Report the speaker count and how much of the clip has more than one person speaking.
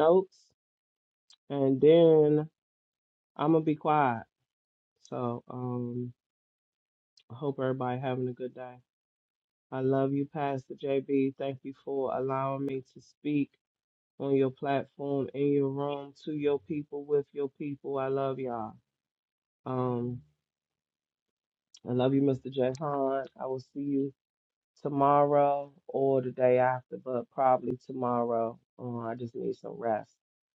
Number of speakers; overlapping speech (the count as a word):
one, no overlap